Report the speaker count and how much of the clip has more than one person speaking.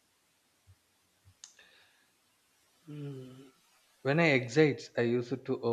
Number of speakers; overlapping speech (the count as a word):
one, no overlap